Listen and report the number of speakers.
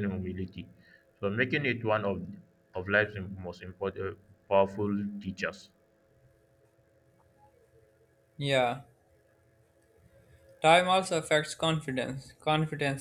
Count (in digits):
2